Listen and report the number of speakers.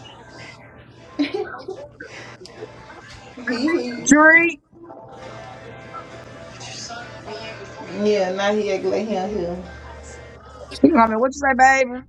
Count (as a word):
two